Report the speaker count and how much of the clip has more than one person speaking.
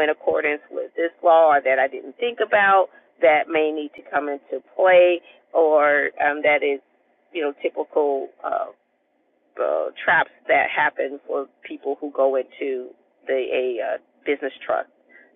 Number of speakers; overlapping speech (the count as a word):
one, no overlap